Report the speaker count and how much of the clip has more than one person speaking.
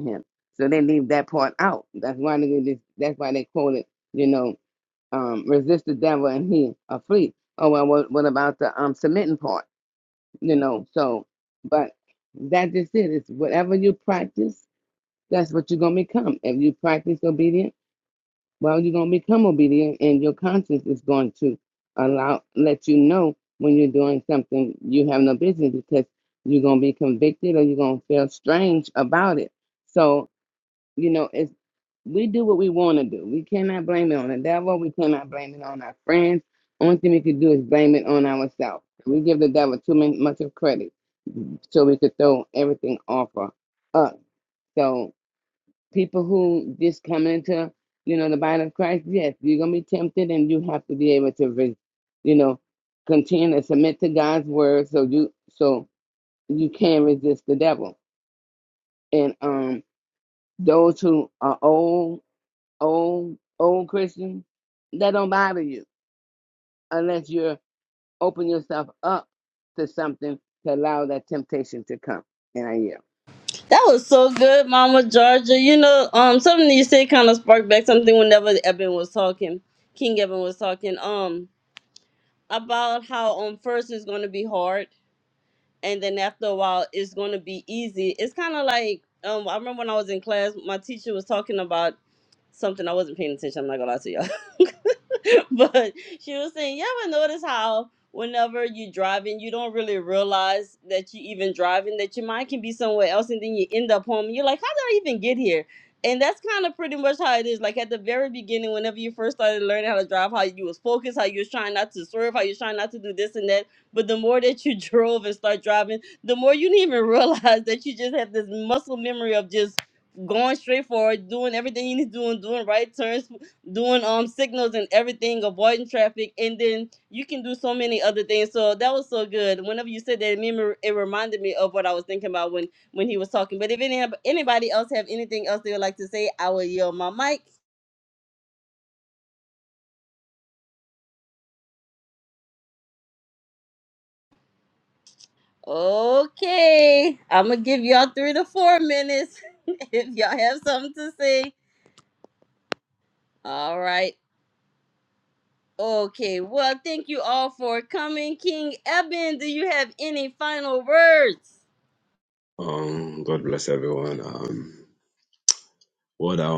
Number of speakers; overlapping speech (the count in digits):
3, no overlap